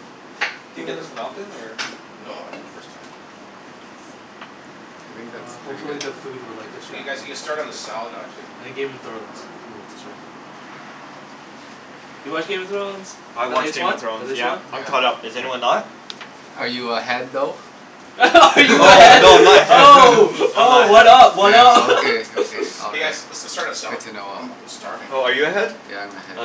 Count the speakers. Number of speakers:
4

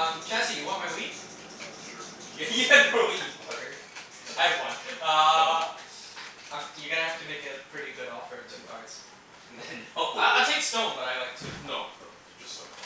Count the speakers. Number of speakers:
3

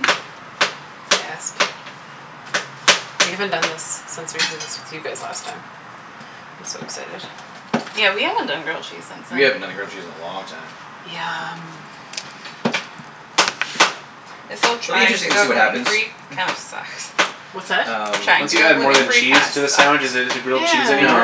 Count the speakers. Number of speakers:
4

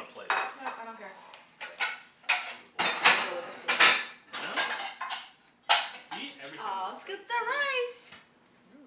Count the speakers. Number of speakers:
4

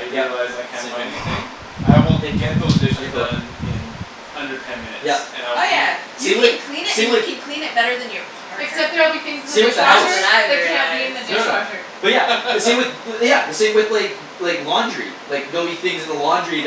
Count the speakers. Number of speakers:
4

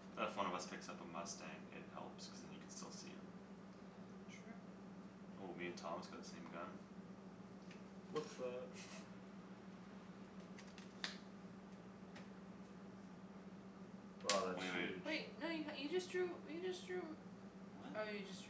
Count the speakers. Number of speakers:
3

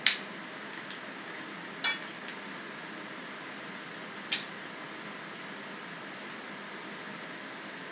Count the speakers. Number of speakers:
0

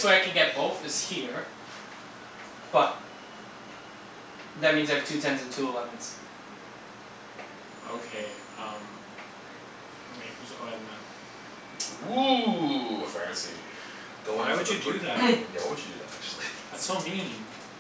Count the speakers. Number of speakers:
3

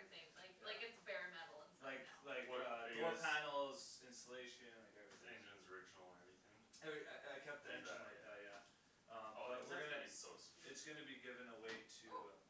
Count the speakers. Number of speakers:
3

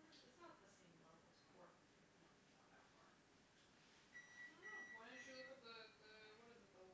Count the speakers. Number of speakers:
2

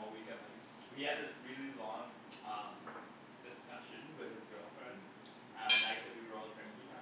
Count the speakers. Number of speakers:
1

